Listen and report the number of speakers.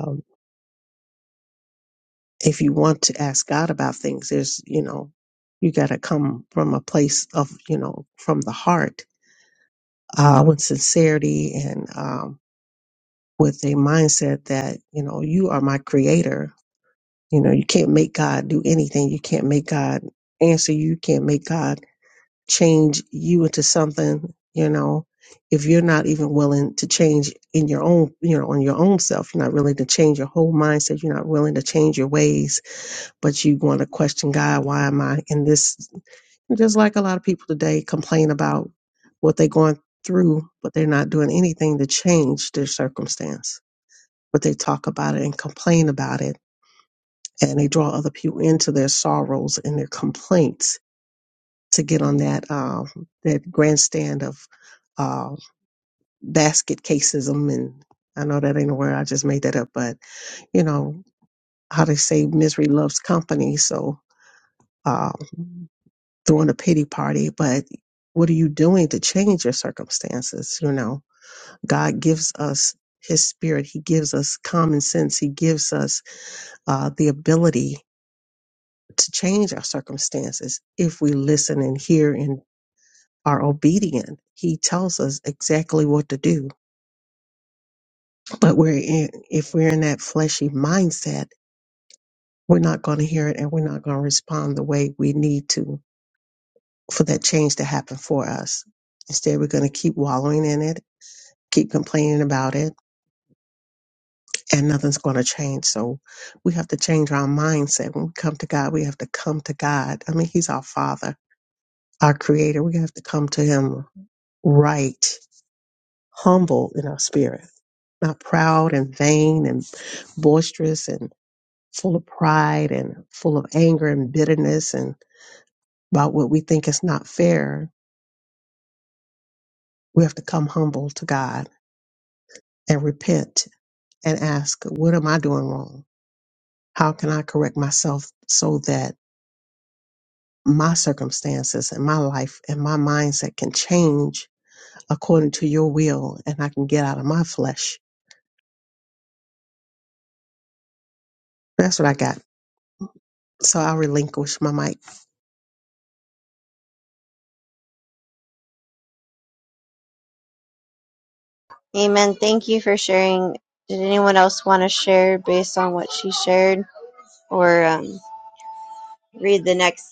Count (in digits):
2